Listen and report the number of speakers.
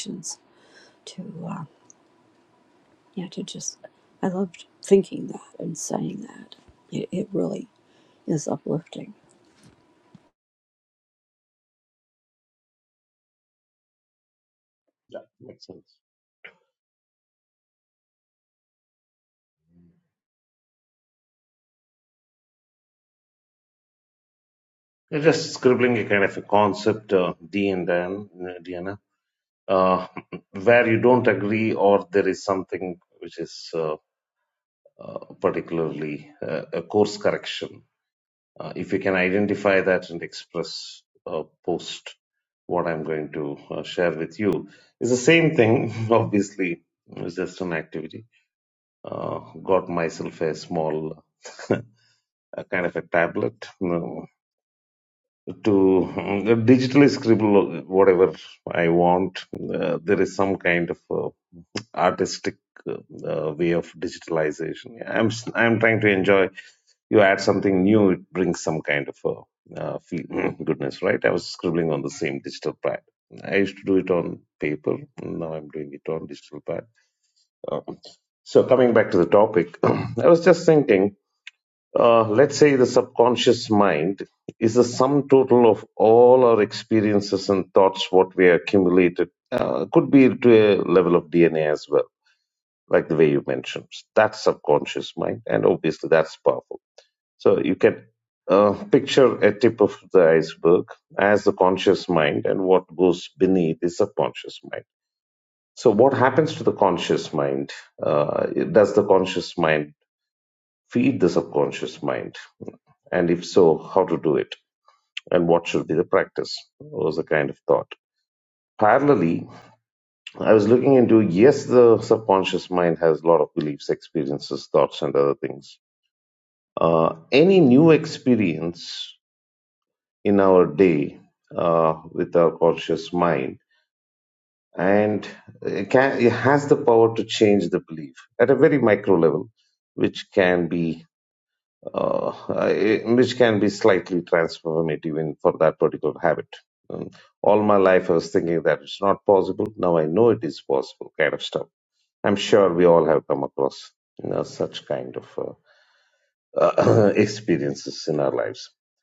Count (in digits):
2